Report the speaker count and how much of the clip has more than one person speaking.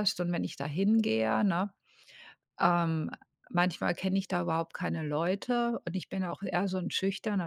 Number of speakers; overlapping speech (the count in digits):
1, no overlap